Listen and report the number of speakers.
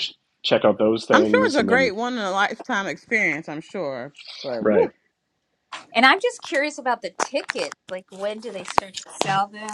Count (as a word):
three